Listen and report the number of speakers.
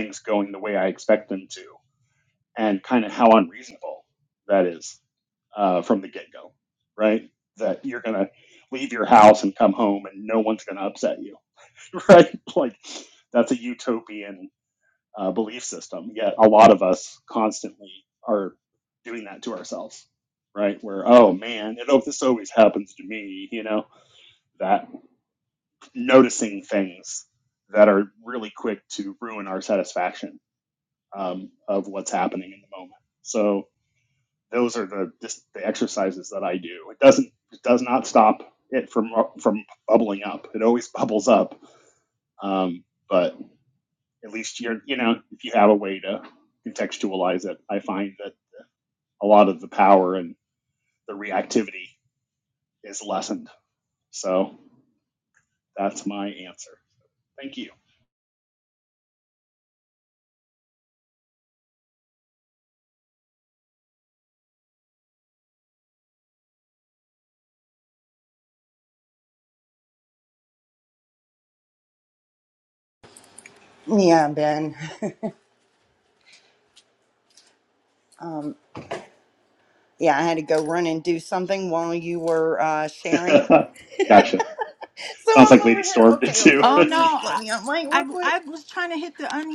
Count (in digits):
3